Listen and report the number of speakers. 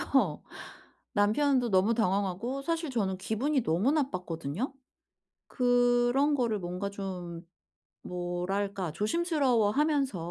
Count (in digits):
1